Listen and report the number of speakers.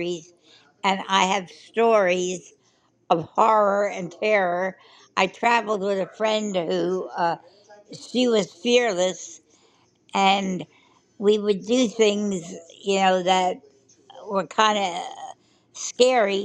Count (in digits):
1